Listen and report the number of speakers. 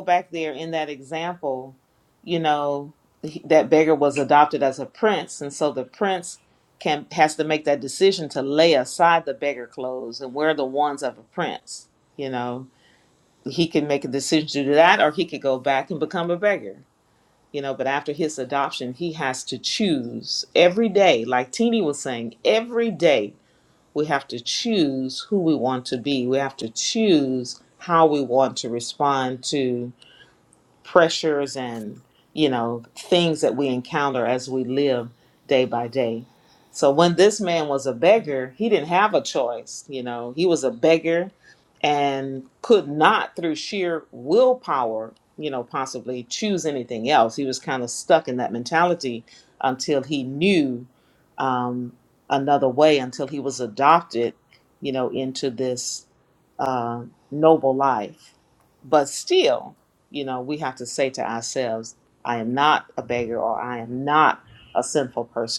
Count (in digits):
1